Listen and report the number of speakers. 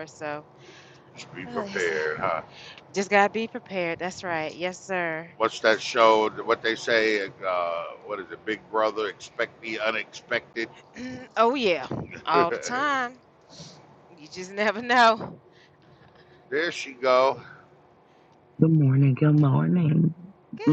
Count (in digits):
3